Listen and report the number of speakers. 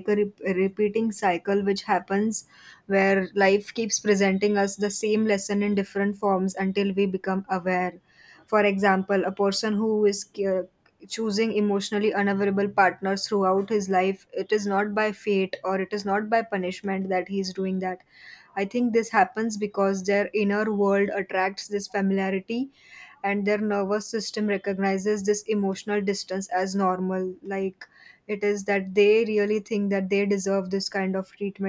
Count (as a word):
one